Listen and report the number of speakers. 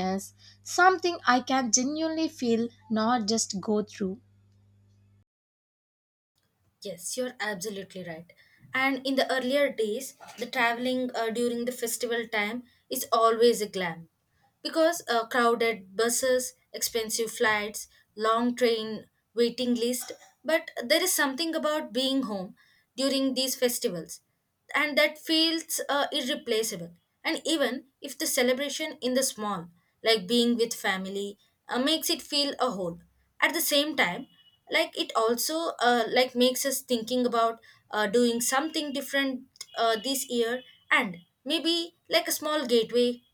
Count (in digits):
2